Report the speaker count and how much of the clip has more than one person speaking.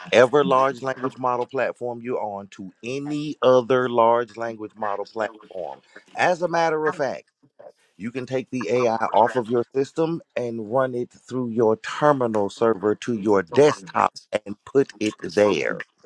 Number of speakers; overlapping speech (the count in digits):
1, no overlap